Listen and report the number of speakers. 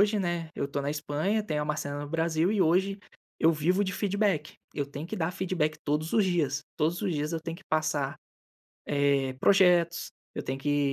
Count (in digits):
1